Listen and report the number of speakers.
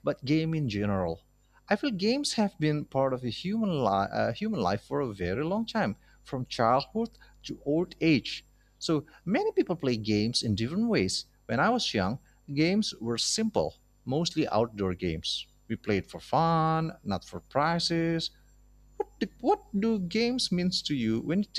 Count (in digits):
1